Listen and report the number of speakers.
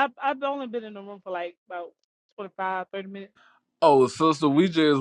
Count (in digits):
2